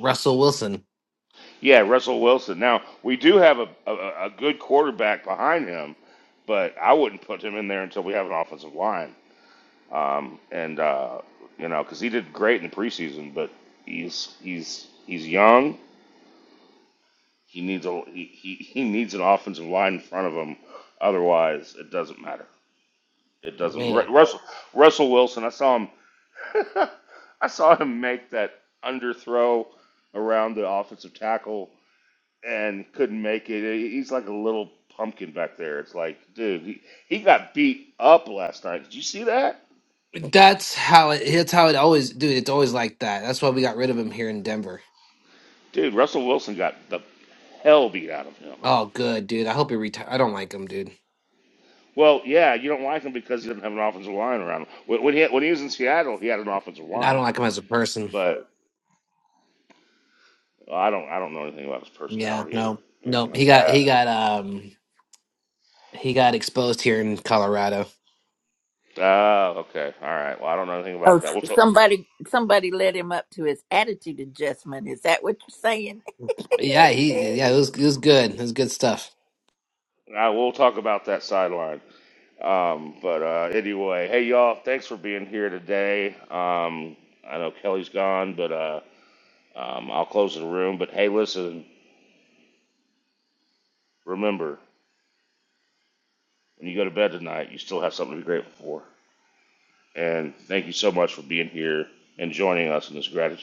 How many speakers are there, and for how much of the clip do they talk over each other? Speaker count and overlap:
three, about 3%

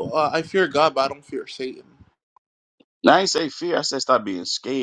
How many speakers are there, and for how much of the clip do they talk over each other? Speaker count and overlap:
two, no overlap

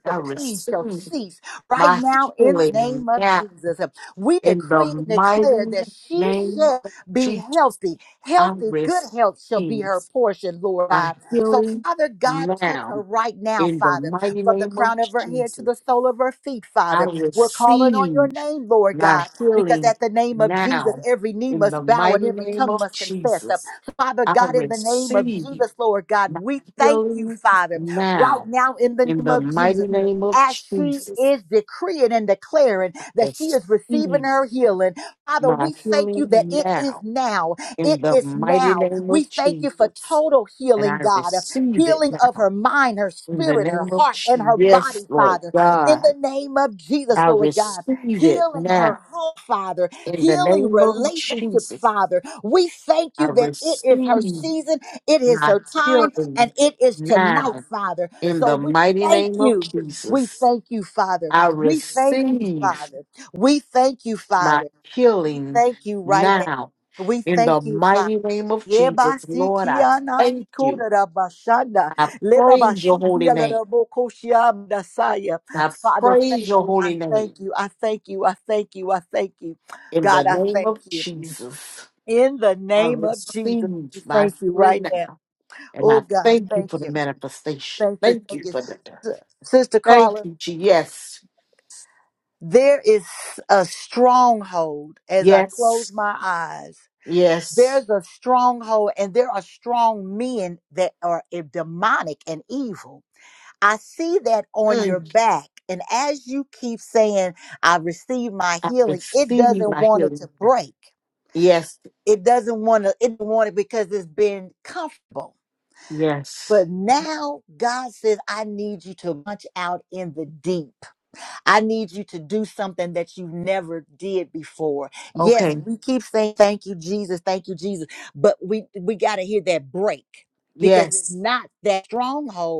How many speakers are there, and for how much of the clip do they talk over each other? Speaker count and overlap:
two, about 38%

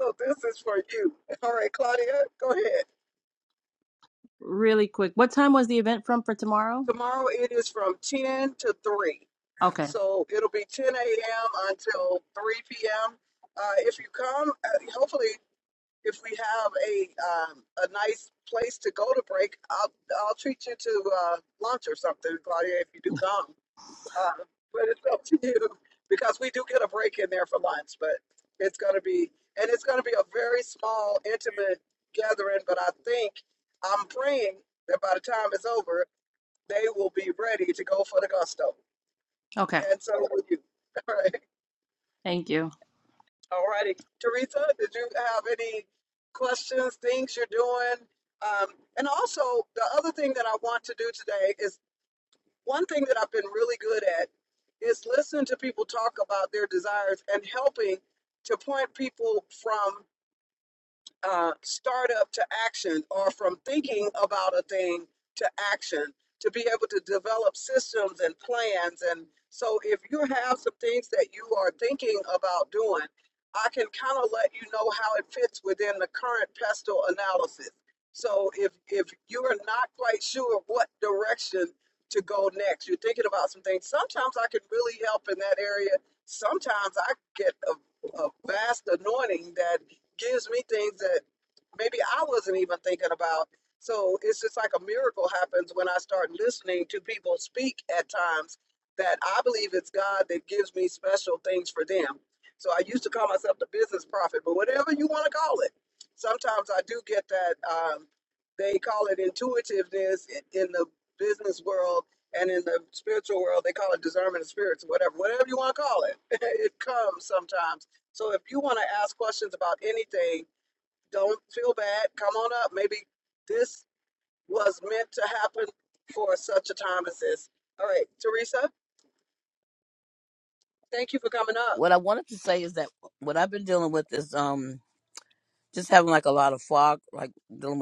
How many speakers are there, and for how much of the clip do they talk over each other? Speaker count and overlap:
three, under 1%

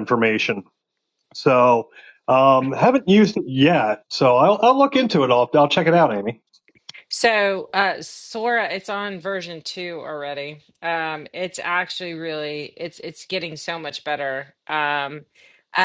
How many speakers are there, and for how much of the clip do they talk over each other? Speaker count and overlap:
two, no overlap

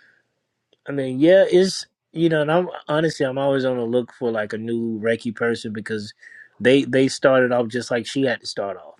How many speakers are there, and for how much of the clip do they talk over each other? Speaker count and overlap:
one, no overlap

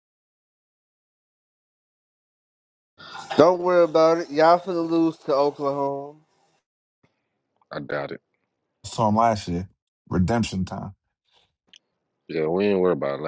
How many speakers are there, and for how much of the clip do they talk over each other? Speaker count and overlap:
three, no overlap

